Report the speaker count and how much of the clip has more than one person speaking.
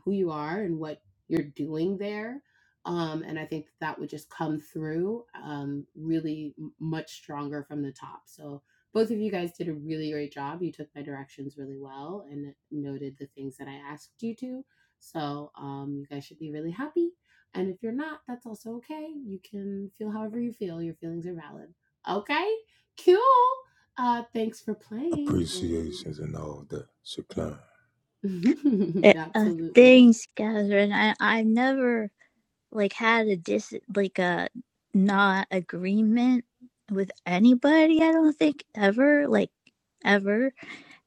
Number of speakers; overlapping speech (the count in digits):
3, about 3%